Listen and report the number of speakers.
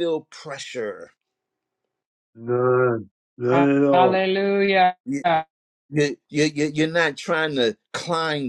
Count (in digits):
3